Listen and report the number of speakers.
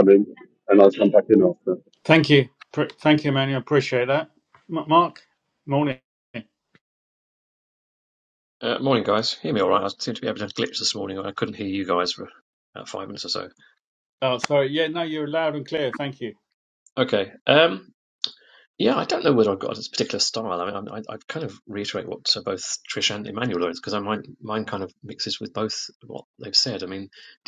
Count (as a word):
three